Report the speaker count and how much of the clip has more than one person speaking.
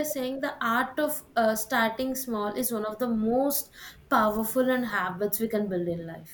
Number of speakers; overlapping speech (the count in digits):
1, no overlap